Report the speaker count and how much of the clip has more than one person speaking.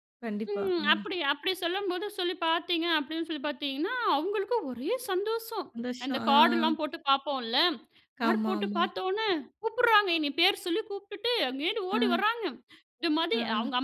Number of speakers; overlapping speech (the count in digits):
2, about 19%